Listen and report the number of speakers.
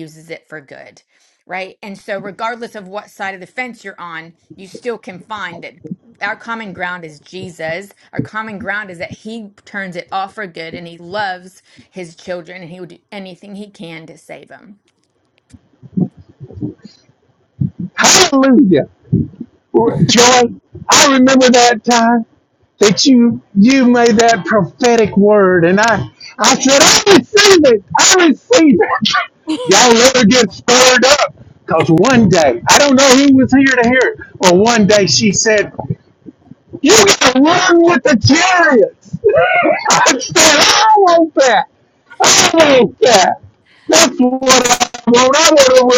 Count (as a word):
two